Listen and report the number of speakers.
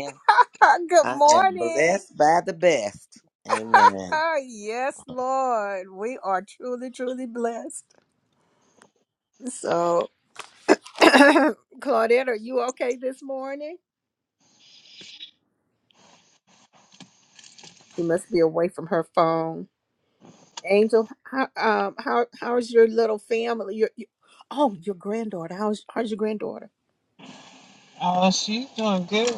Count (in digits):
3